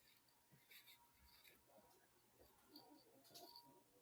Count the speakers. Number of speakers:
0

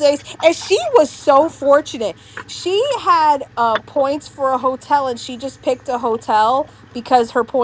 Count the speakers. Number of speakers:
1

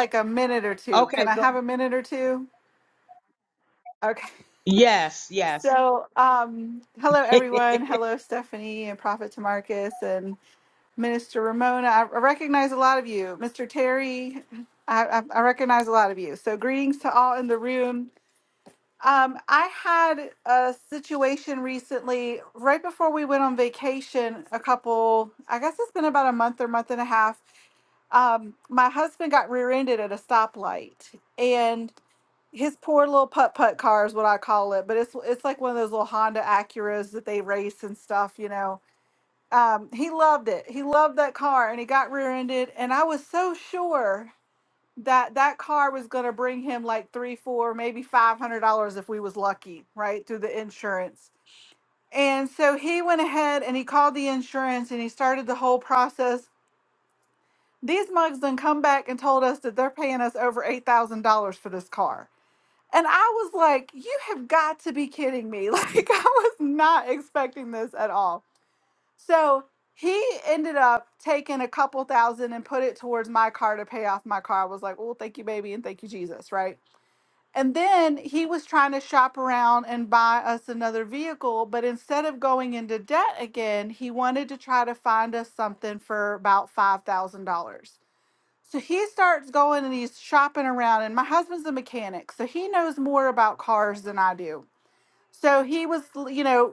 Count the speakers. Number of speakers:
2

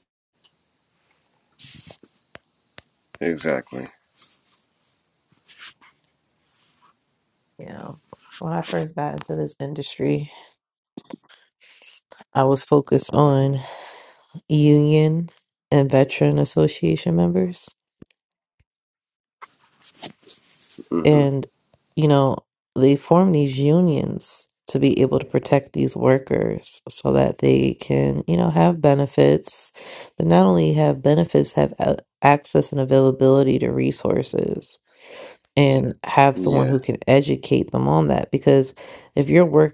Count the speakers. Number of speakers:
2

